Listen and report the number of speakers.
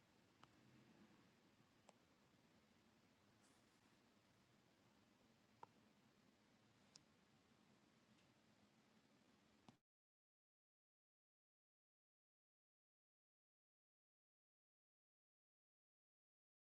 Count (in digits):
0